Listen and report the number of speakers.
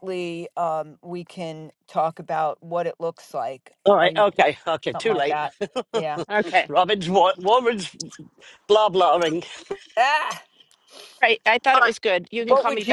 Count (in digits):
3